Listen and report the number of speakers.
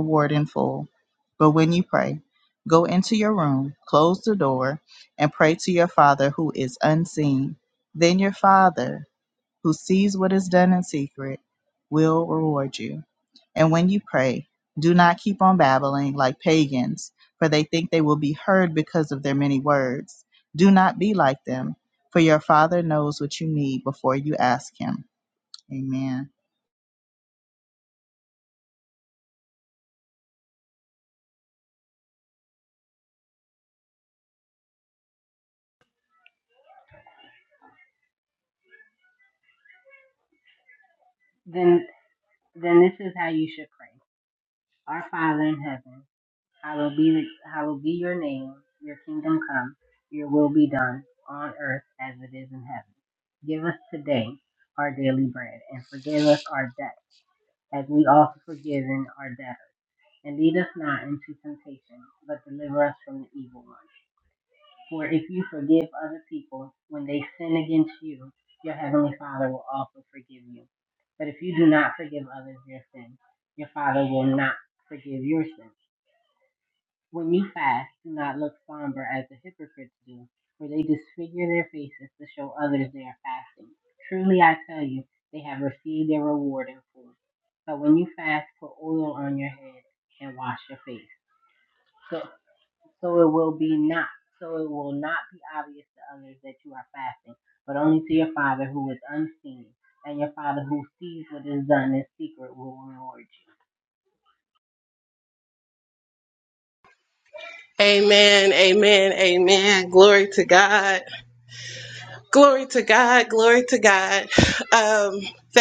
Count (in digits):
3